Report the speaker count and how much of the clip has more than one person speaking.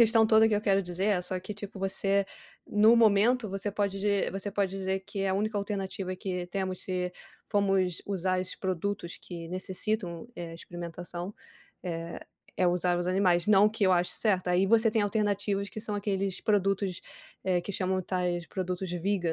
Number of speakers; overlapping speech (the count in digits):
1, no overlap